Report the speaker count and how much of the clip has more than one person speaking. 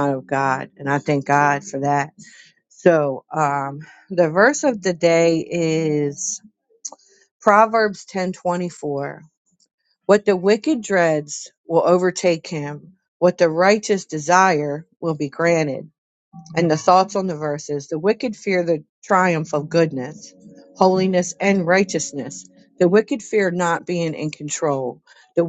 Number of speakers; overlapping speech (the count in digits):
1, no overlap